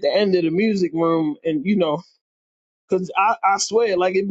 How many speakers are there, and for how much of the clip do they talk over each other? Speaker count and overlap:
1, no overlap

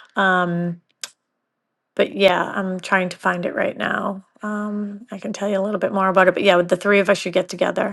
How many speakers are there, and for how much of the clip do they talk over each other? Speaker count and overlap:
1, no overlap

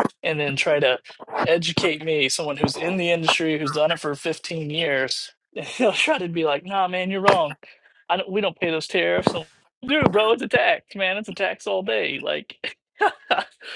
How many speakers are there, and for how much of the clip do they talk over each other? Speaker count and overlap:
1, no overlap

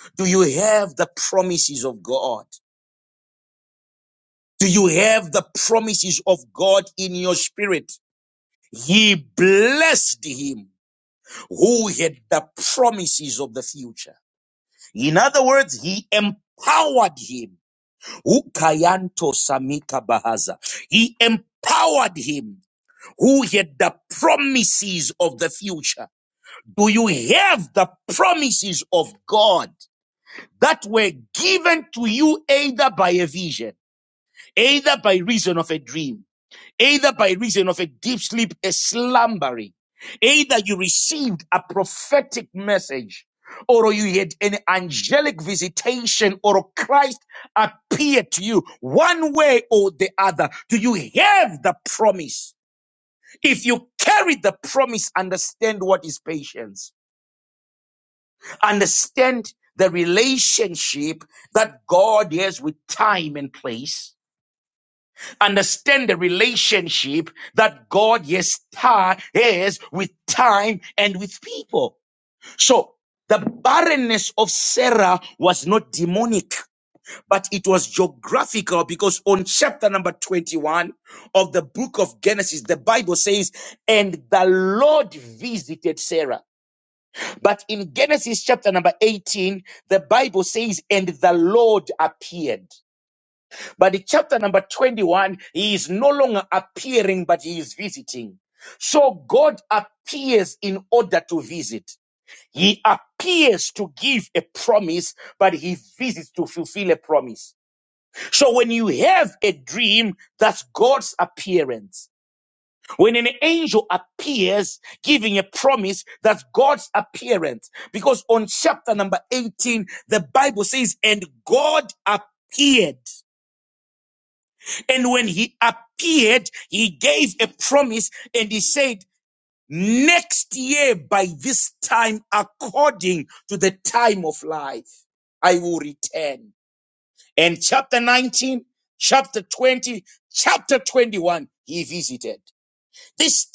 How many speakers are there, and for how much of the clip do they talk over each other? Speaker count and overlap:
1, no overlap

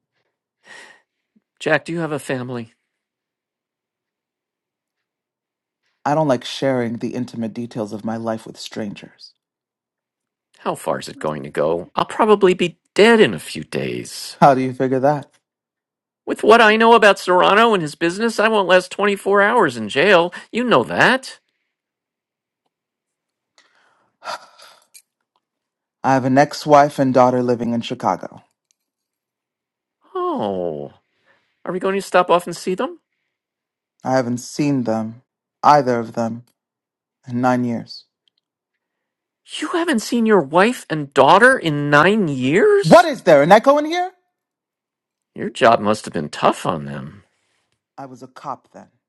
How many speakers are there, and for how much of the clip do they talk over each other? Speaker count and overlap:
2, under 1%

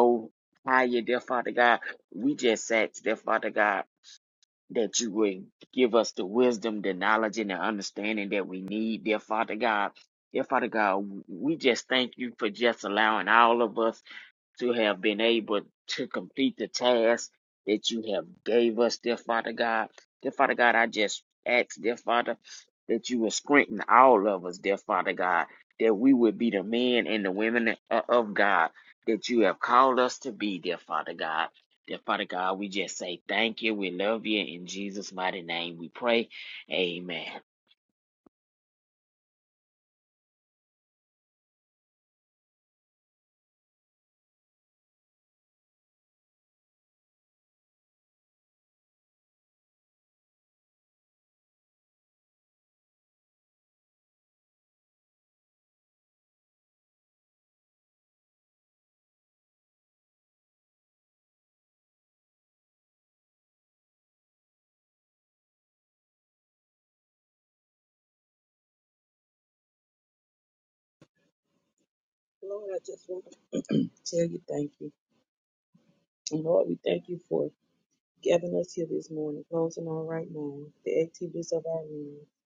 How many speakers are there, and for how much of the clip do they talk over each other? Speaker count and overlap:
2, no overlap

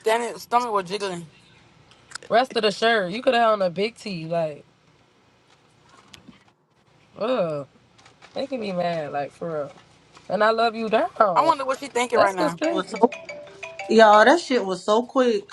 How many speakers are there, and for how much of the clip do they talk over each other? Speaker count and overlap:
3, about 6%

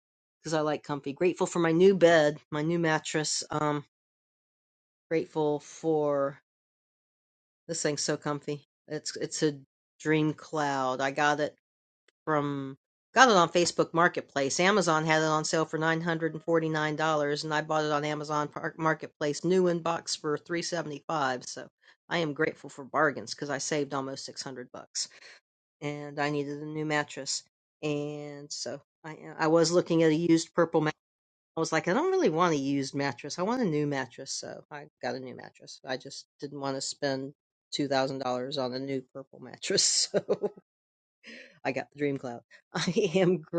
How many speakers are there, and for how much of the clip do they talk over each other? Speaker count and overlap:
1, no overlap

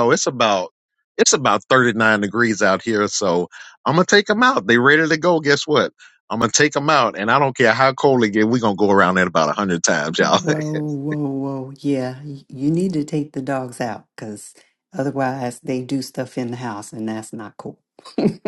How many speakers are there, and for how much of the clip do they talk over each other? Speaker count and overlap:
2, about 1%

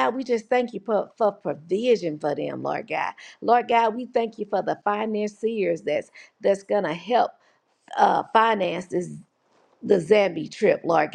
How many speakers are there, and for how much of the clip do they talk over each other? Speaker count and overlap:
1, no overlap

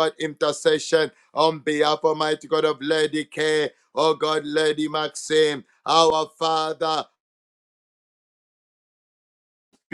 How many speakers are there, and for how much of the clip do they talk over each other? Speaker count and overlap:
1, no overlap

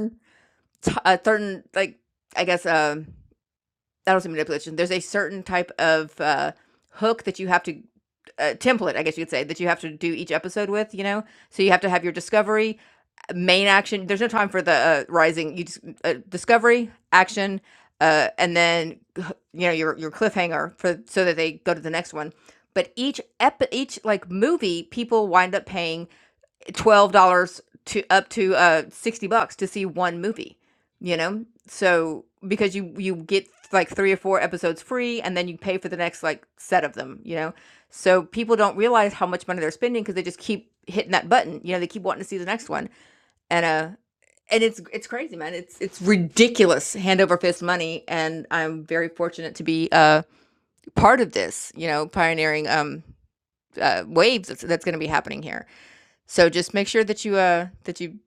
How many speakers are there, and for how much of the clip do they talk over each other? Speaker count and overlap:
1, no overlap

